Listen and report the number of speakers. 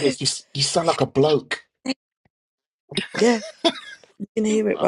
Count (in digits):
2